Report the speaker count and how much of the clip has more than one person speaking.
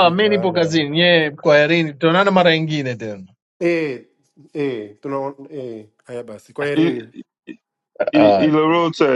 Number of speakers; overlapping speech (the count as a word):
three, about 16%